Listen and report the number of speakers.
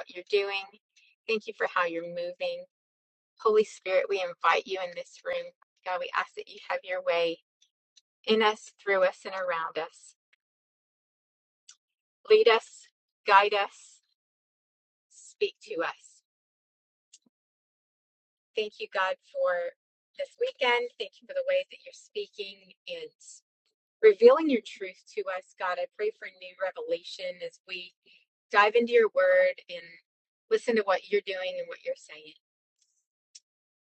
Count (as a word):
one